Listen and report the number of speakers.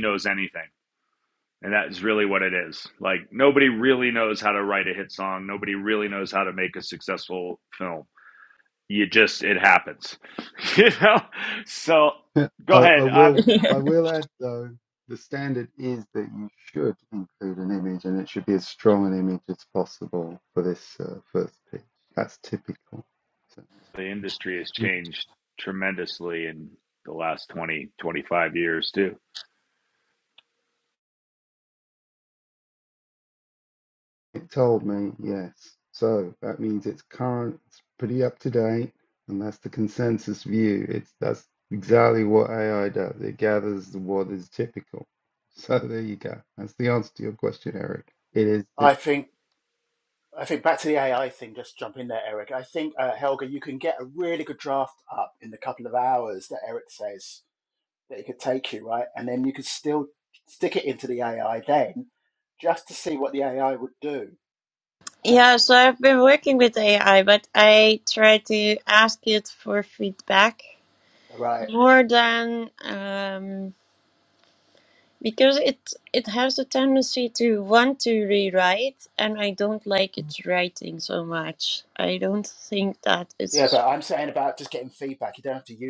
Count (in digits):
4